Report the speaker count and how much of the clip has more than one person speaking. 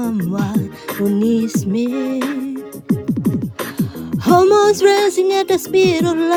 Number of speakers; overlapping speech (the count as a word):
one, no overlap